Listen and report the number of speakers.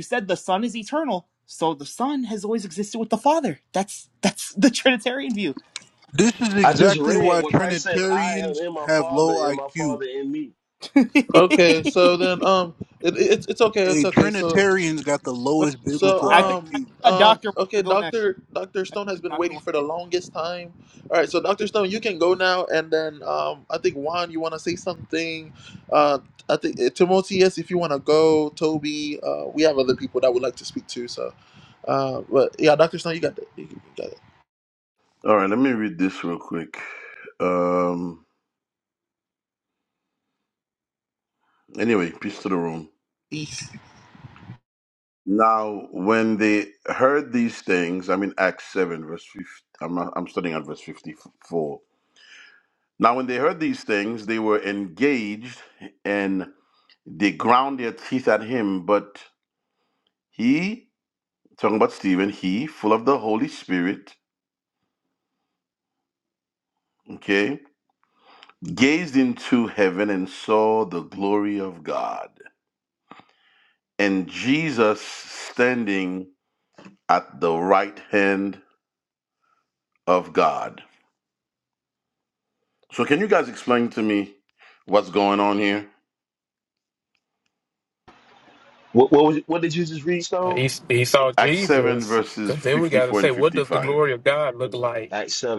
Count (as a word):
six